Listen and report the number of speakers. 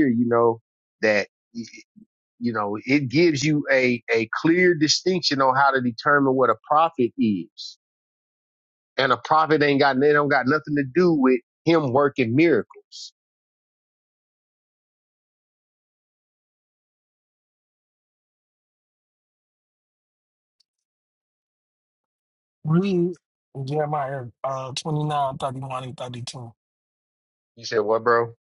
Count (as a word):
two